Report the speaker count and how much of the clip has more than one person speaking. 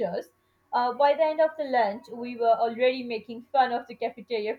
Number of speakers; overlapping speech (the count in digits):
1, no overlap